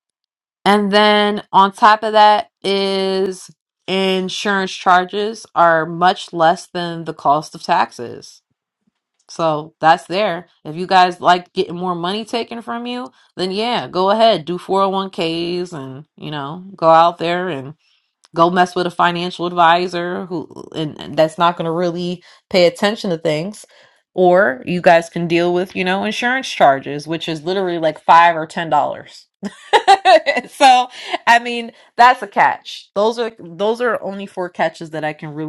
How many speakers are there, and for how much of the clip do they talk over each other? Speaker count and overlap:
one, no overlap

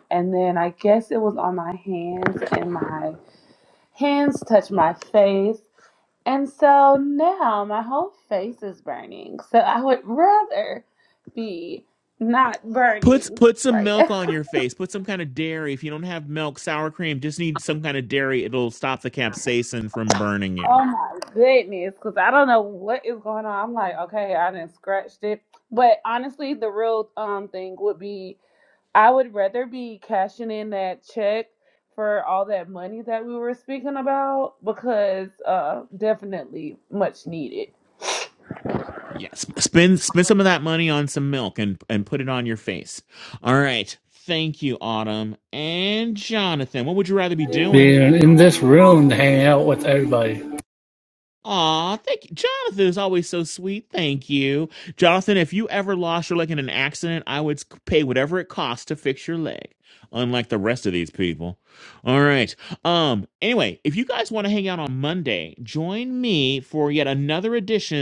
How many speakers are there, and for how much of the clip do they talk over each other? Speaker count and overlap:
three, about 2%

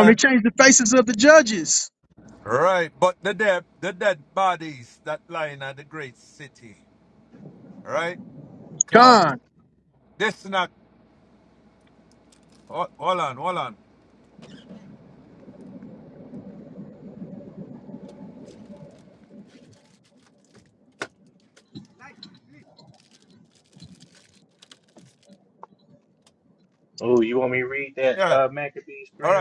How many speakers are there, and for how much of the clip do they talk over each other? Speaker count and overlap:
three, about 3%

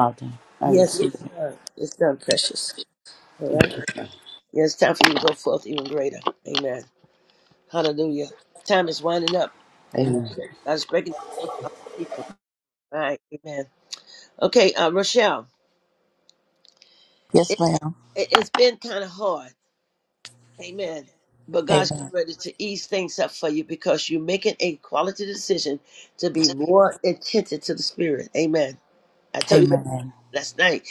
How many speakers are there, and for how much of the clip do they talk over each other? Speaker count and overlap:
three, about 6%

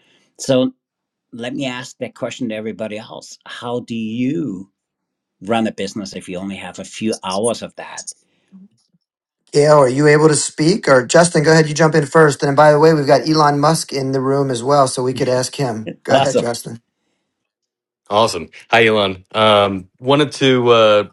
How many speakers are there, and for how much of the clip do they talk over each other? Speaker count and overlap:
three, about 2%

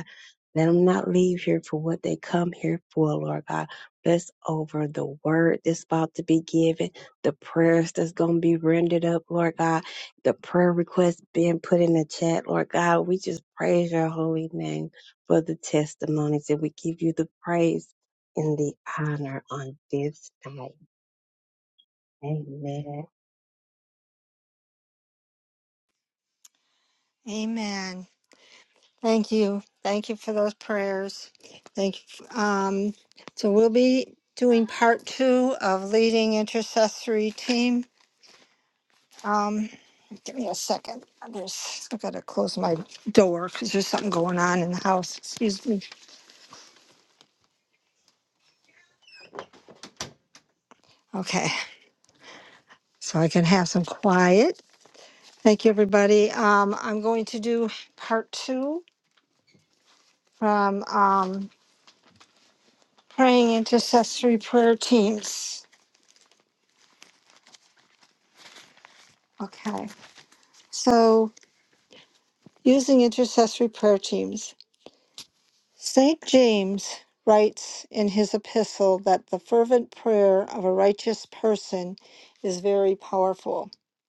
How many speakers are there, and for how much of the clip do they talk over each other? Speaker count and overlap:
two, no overlap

